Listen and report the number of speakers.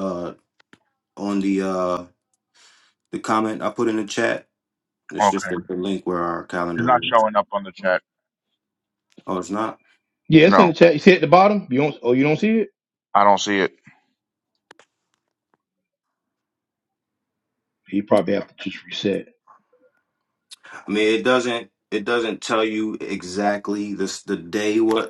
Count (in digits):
3